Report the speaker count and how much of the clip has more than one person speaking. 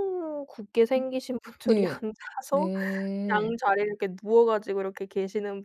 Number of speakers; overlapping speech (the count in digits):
2, about 15%